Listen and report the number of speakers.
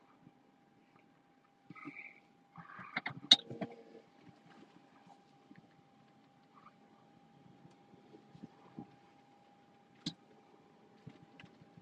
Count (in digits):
0